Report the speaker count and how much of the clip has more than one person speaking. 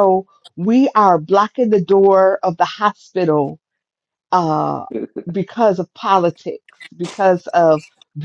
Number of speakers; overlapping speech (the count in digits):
1, no overlap